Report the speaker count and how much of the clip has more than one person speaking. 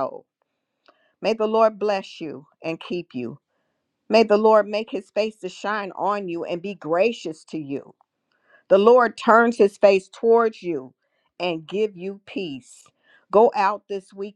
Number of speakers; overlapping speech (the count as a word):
one, no overlap